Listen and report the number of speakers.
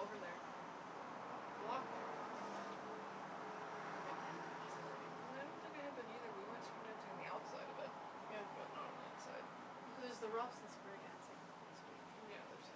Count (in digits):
2